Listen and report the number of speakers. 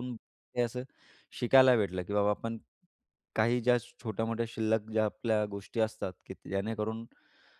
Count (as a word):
one